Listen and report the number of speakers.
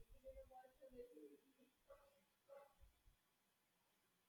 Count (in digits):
0